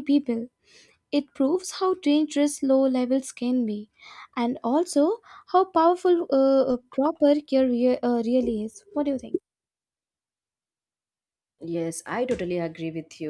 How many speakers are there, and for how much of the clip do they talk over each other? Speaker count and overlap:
2, no overlap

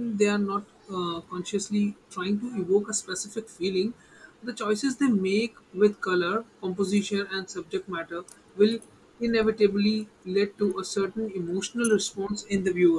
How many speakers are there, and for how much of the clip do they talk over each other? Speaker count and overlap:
1, no overlap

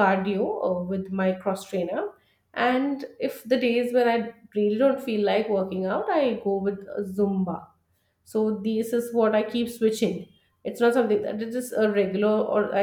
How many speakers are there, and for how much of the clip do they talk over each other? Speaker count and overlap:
1, no overlap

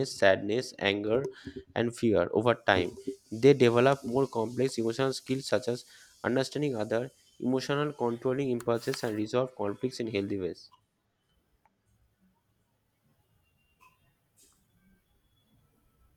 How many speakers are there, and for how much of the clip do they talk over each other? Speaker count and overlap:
1, no overlap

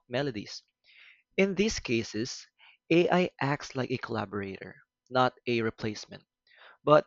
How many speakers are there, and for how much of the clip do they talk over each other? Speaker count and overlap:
1, no overlap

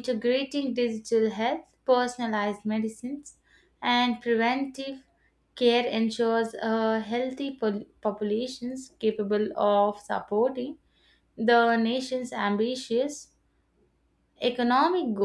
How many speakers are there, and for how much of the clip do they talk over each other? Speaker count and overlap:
1, no overlap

